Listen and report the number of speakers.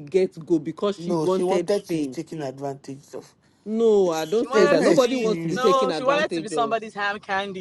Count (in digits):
3